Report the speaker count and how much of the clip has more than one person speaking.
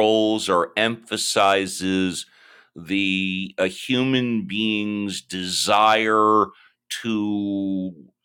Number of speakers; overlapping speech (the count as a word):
one, no overlap